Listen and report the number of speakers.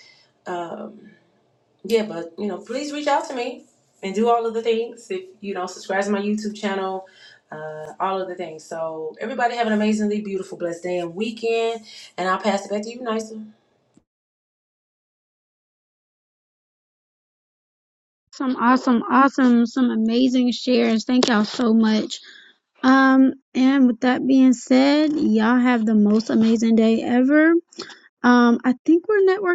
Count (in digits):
2